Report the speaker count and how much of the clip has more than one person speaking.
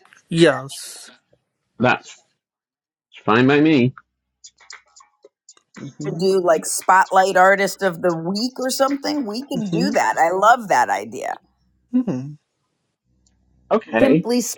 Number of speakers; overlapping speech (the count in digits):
3, about 6%